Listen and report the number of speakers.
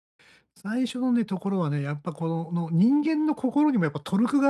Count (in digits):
1